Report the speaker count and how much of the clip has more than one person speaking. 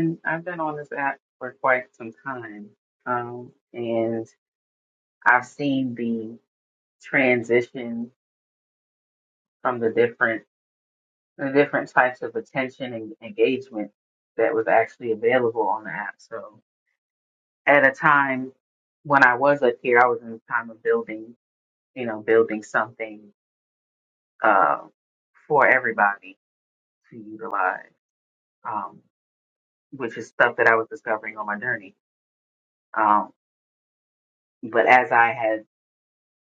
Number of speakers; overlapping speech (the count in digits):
1, no overlap